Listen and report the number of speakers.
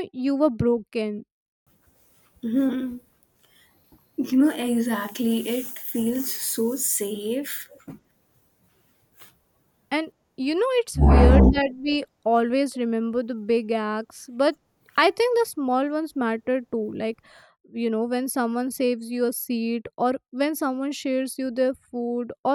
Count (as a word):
two